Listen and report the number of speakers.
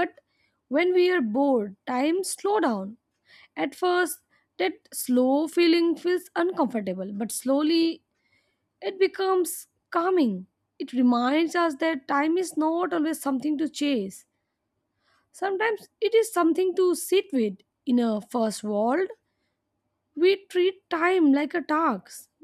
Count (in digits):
1